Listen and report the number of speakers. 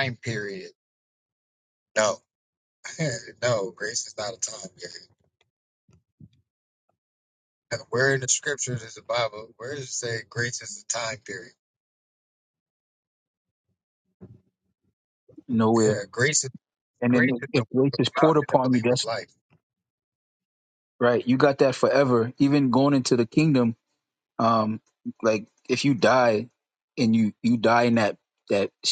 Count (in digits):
2